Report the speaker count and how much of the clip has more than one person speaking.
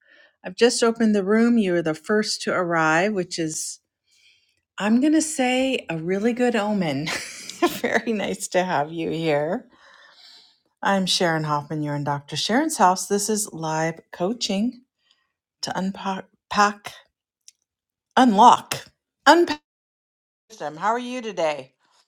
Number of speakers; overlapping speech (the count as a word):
one, no overlap